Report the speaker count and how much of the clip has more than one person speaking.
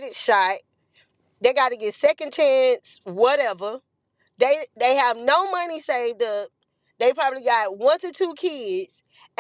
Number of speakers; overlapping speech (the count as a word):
one, no overlap